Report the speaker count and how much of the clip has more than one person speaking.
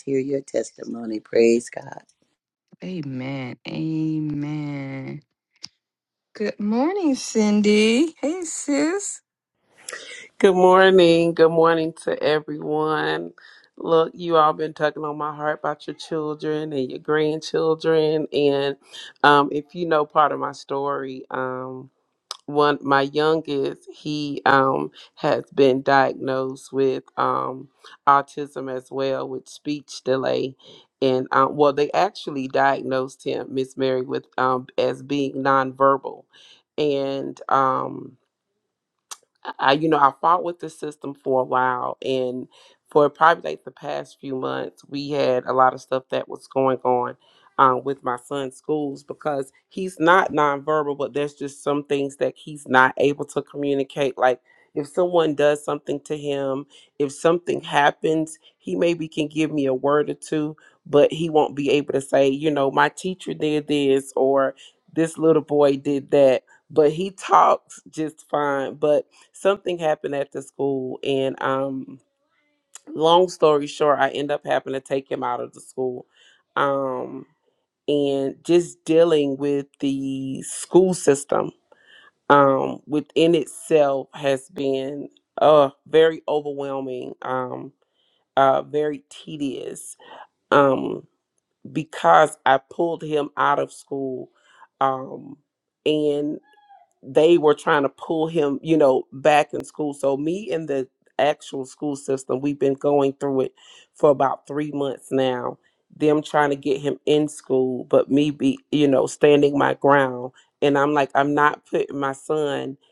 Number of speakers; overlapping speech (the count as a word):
three, no overlap